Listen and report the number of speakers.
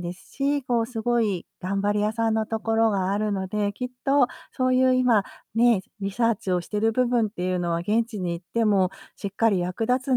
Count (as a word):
one